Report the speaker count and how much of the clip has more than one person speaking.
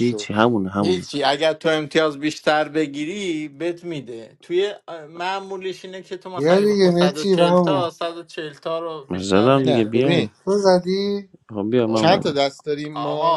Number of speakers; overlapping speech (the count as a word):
four, about 30%